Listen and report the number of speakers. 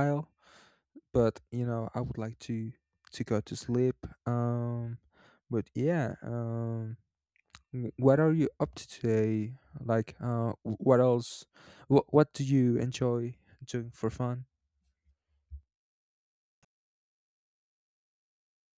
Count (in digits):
1